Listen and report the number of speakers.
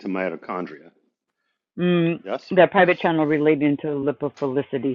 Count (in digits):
2